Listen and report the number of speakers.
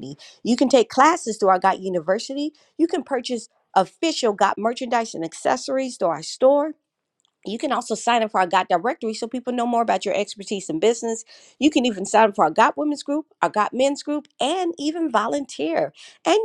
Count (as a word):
one